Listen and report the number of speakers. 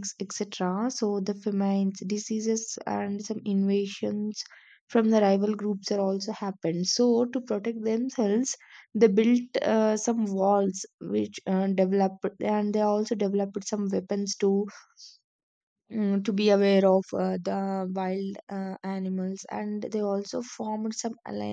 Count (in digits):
1